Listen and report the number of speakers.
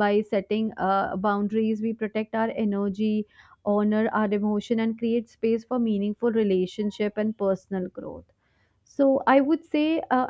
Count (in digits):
1